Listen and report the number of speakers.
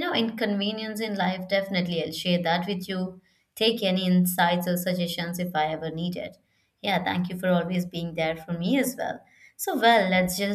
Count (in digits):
1